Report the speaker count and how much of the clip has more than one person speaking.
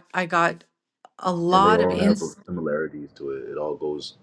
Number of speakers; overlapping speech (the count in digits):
2, about 17%